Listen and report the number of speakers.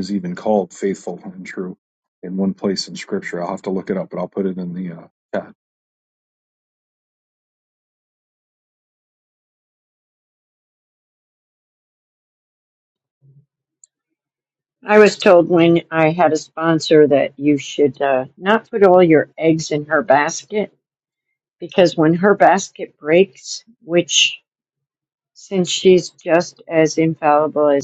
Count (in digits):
2